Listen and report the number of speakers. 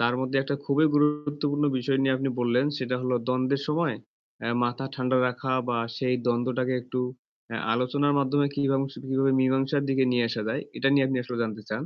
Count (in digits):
1